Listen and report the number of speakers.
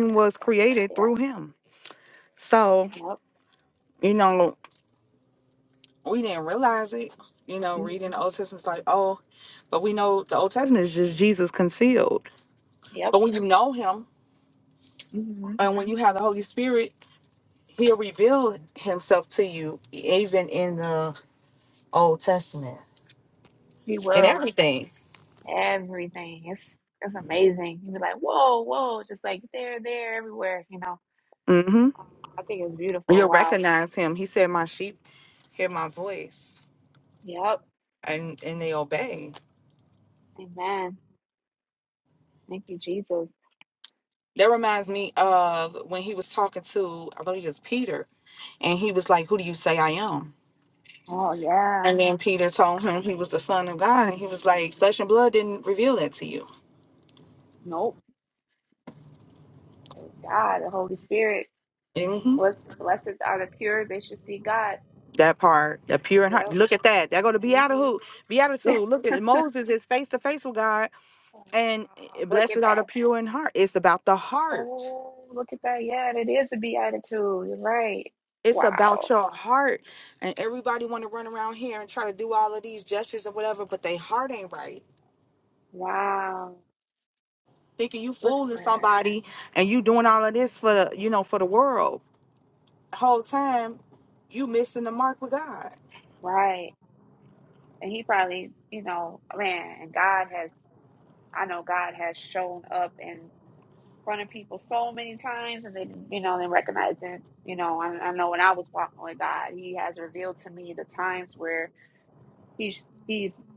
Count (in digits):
2